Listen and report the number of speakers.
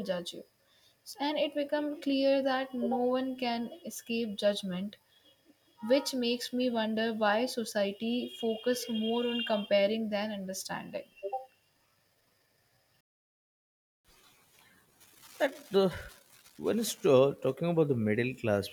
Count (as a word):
two